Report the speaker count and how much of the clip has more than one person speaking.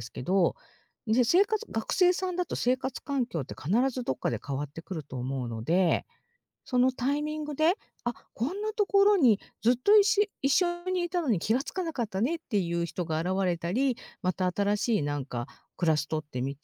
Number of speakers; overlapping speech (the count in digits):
1, no overlap